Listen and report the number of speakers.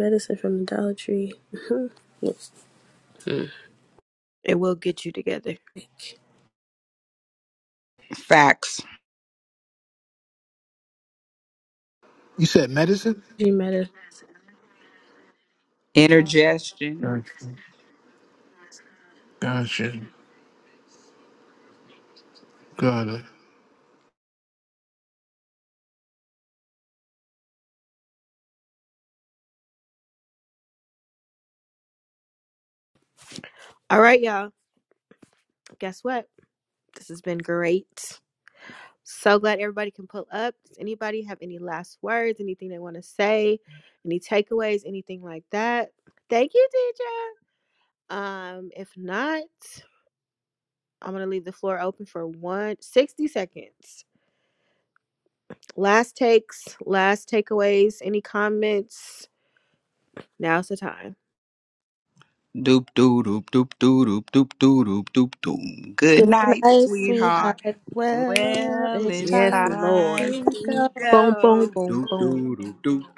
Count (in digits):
4